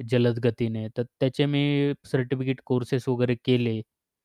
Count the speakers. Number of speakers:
1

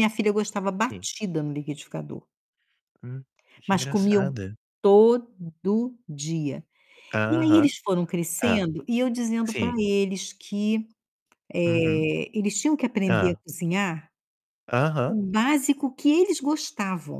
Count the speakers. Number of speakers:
2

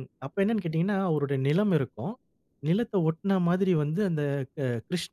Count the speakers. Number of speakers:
1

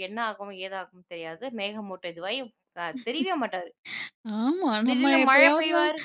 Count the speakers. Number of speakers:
2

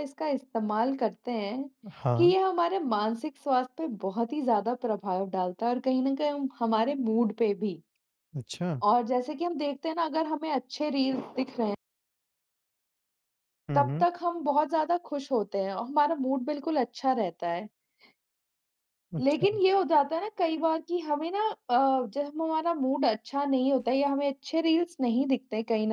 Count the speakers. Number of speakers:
2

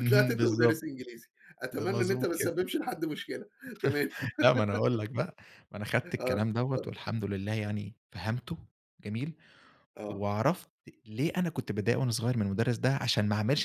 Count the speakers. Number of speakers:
2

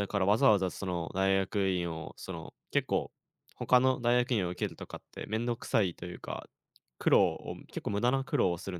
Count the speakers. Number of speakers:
1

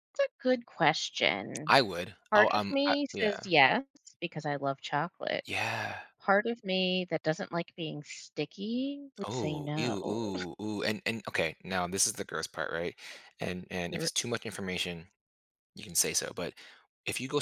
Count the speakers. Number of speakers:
2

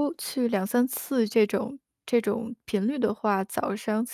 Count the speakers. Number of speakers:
1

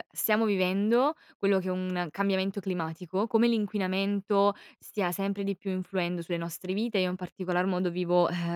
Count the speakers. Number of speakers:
1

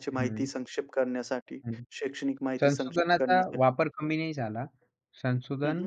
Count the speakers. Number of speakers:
2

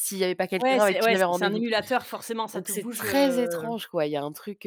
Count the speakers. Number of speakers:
2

